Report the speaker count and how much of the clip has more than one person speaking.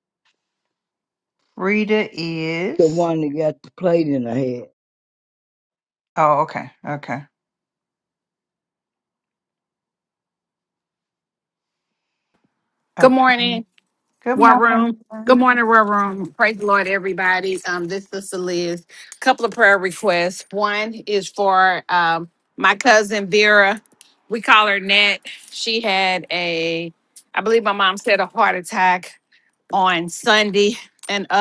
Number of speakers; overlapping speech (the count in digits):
3, about 2%